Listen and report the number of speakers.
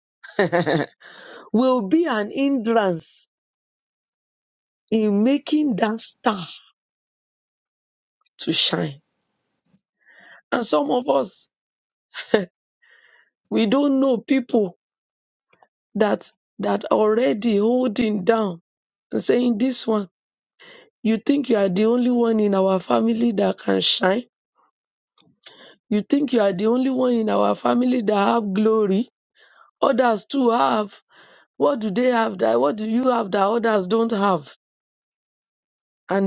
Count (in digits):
1